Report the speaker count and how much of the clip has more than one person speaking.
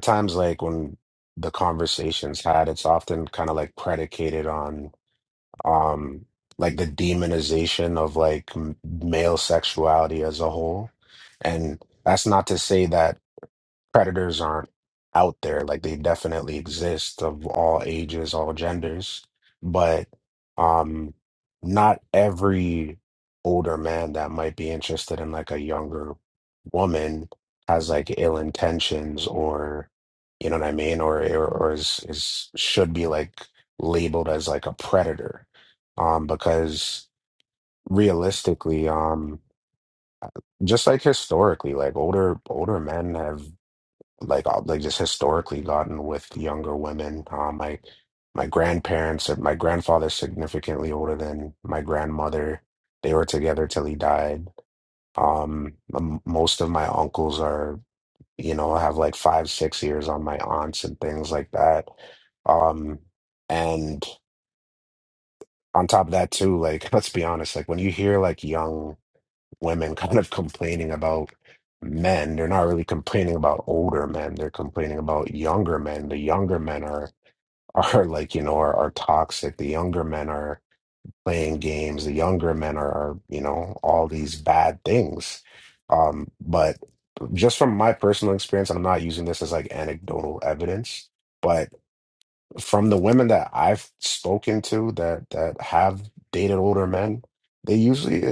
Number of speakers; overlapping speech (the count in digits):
1, no overlap